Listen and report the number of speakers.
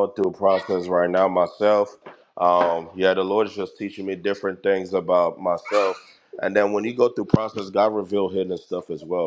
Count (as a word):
one